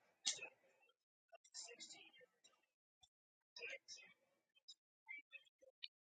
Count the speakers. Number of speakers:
0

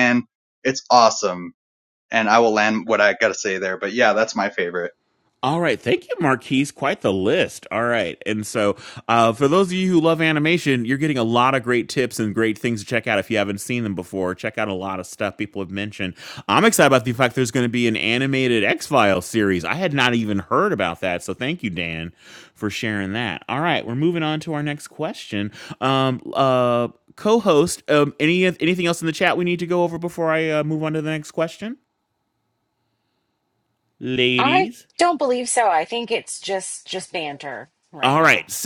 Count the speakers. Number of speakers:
3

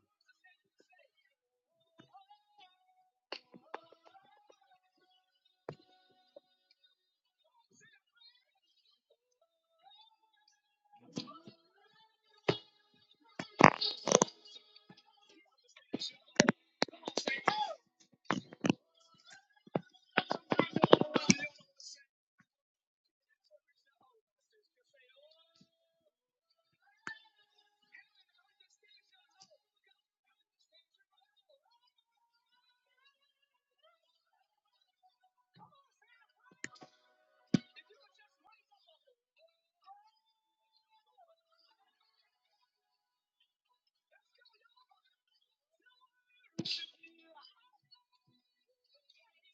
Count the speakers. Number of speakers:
0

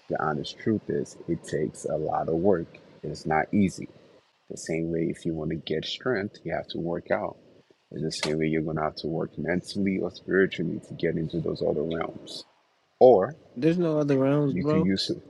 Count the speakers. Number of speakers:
2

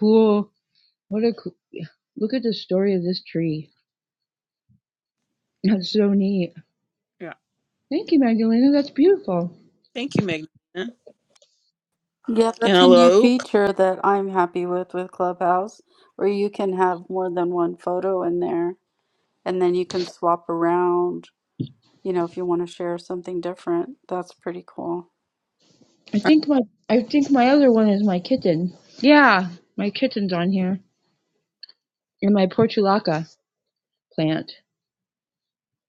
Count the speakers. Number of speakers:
3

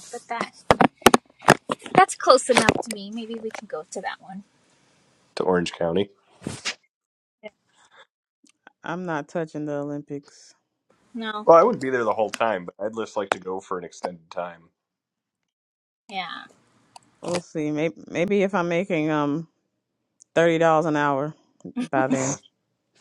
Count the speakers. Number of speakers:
3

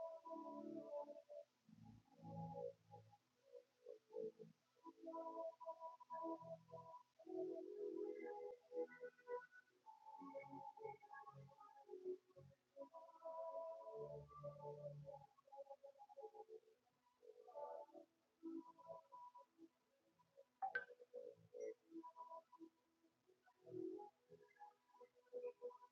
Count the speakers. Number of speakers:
0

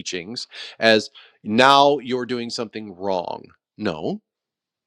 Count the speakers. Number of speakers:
1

